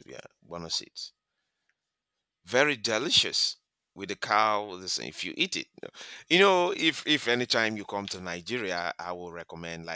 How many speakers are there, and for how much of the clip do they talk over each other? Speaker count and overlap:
one, no overlap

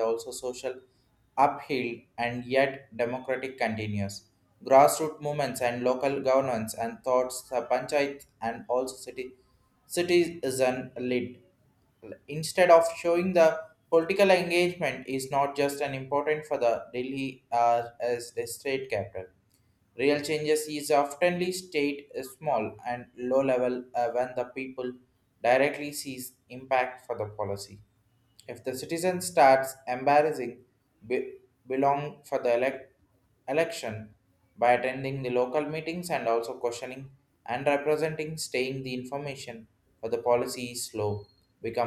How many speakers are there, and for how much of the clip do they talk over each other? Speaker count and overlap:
one, no overlap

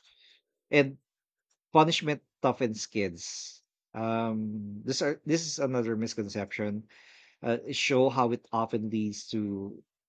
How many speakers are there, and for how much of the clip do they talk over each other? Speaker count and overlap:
one, no overlap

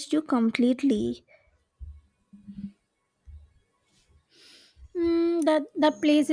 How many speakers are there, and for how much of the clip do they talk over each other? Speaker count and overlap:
two, no overlap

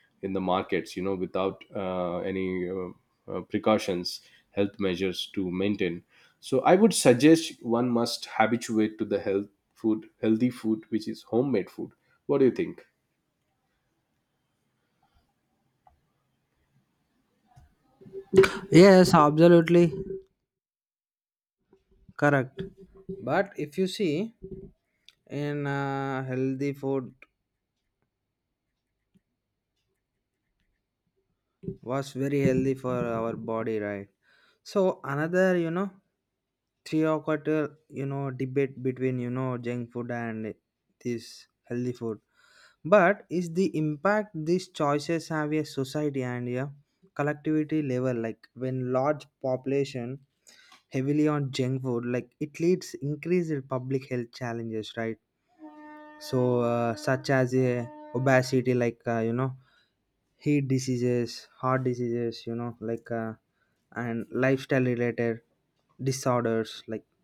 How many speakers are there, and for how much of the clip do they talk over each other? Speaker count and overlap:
two, no overlap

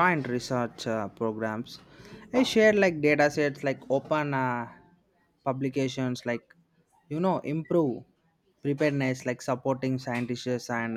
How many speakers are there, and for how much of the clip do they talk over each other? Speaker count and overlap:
one, no overlap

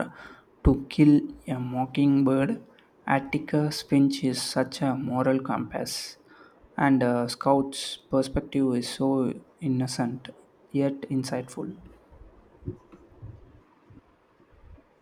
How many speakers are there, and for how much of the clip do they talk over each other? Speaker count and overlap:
one, no overlap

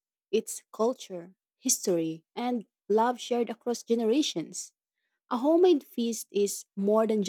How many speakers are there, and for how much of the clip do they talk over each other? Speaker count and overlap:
one, no overlap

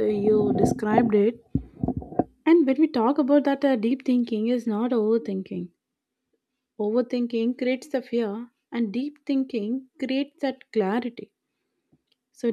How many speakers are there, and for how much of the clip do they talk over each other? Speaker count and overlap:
one, no overlap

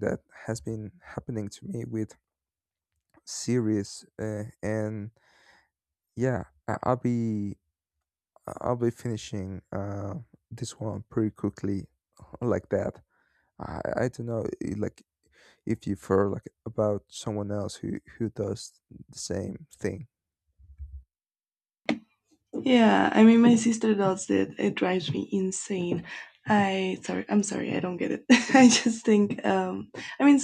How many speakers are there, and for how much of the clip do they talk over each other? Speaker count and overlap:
two, no overlap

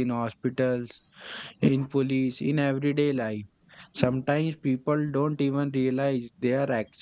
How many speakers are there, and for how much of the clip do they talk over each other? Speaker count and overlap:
one, no overlap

